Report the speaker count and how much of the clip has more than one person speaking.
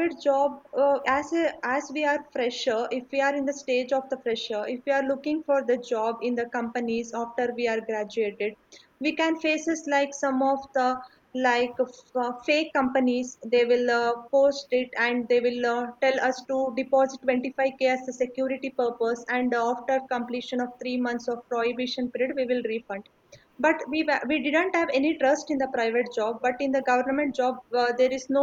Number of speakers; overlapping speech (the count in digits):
1, no overlap